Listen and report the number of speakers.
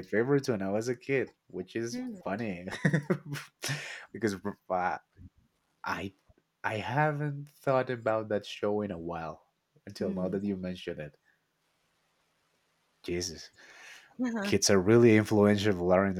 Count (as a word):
one